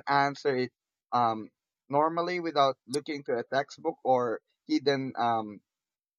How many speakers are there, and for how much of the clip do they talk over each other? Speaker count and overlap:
1, no overlap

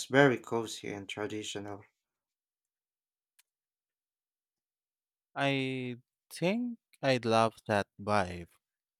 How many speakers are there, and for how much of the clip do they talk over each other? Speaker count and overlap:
2, no overlap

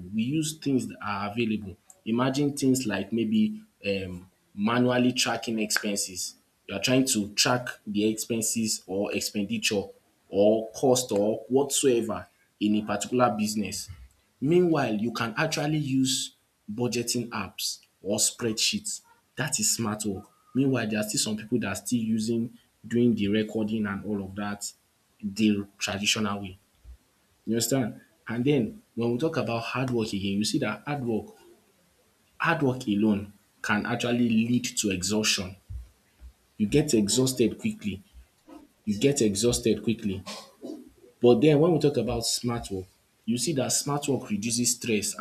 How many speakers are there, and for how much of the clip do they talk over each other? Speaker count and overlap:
1, no overlap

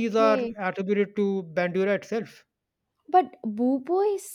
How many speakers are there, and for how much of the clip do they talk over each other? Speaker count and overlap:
2, about 12%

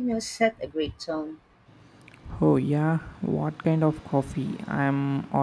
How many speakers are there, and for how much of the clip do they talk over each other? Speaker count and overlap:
2, no overlap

